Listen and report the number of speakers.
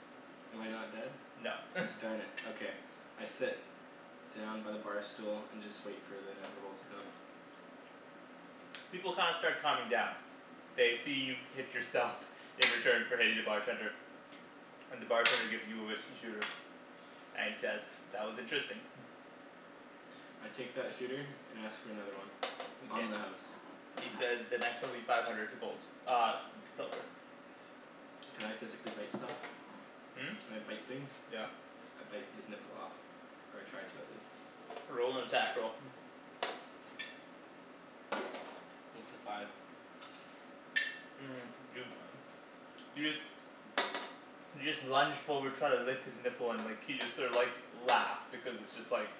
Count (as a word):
two